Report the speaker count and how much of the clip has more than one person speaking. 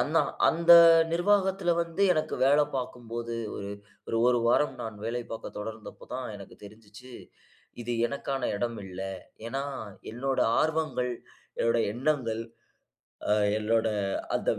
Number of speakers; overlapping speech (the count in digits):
1, no overlap